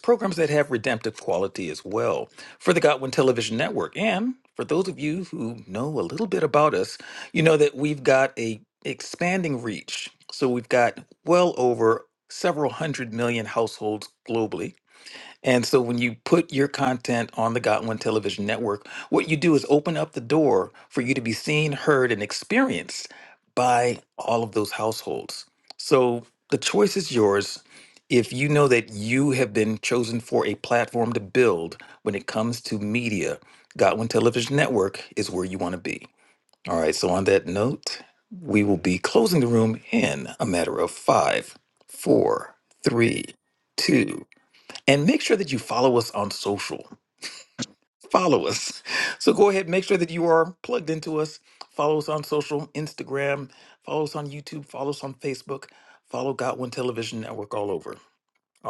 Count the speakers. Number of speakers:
1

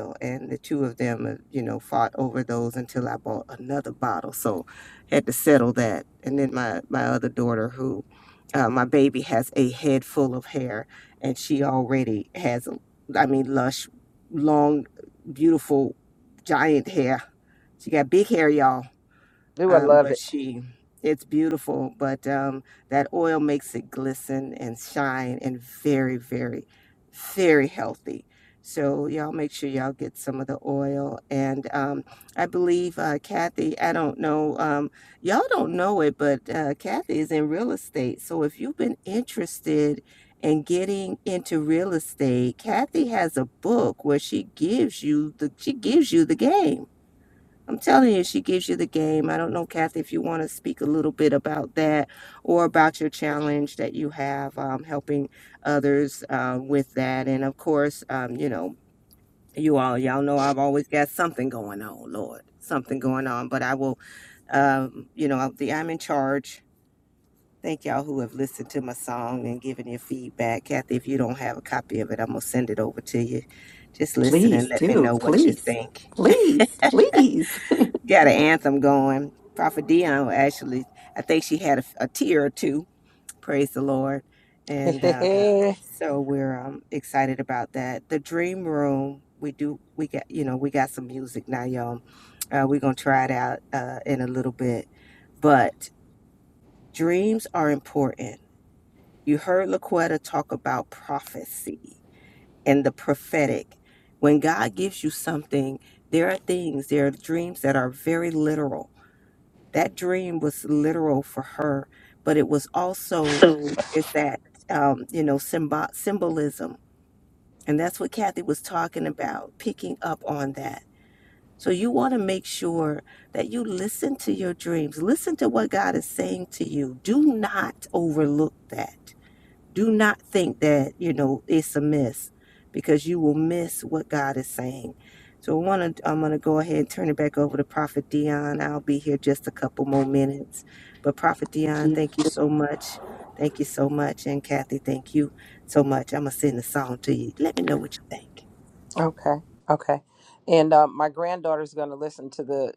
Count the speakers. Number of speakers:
3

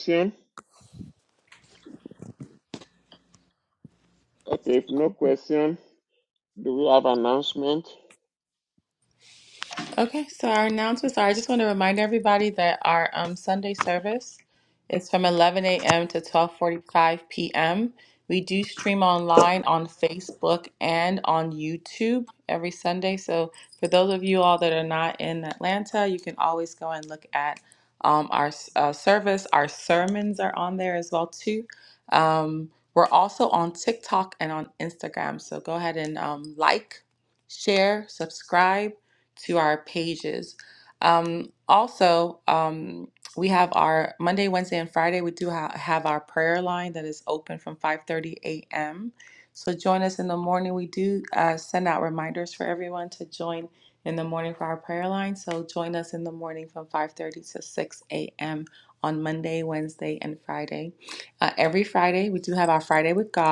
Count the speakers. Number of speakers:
2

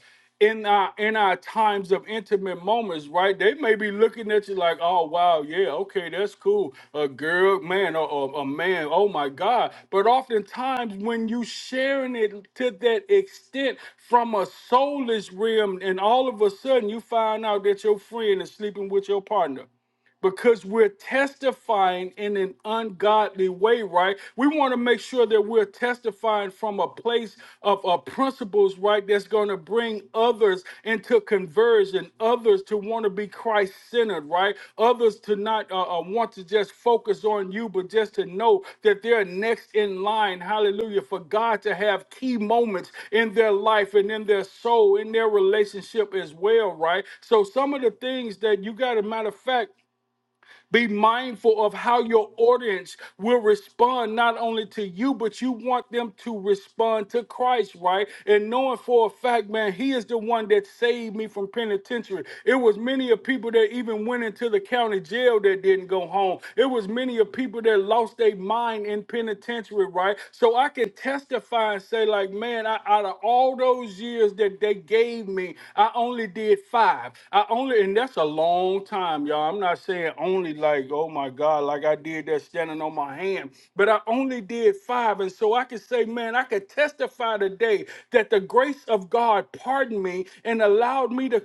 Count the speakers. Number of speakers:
1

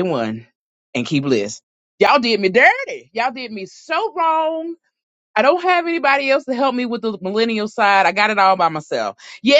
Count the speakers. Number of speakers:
1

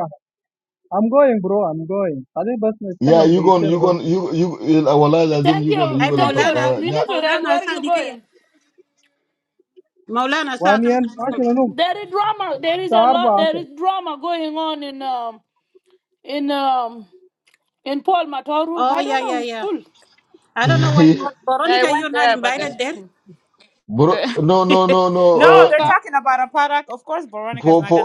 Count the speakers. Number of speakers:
5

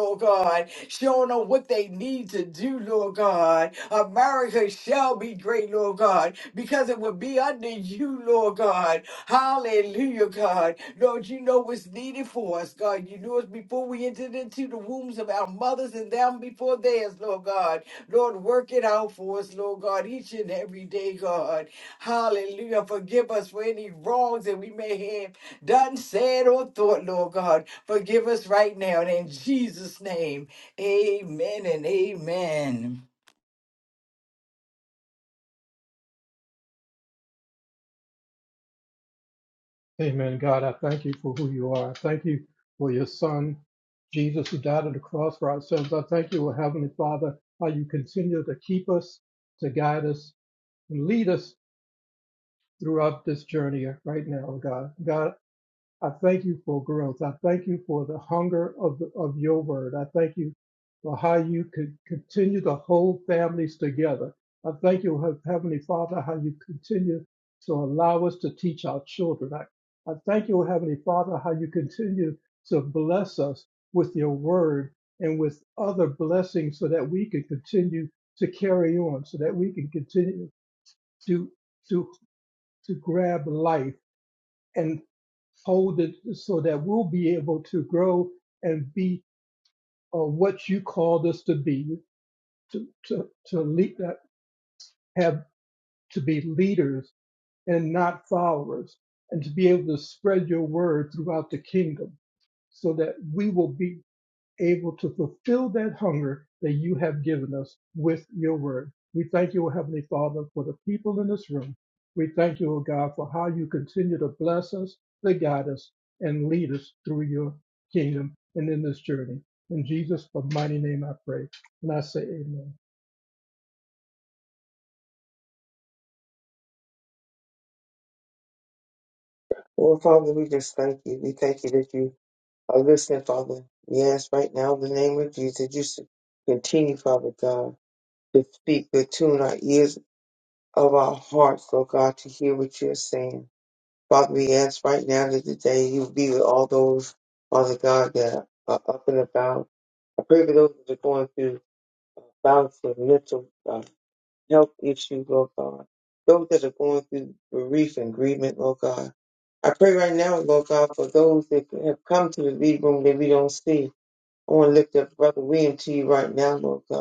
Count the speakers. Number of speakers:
3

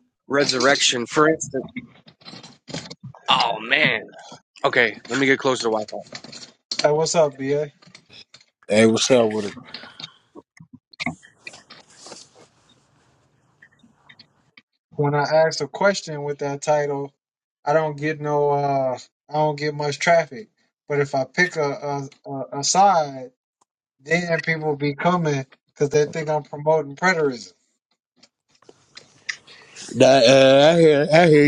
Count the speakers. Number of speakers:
3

